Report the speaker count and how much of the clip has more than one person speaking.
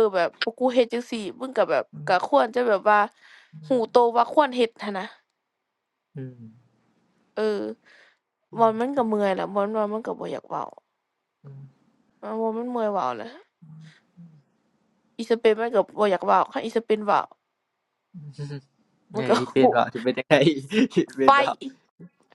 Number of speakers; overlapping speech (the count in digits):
2, about 2%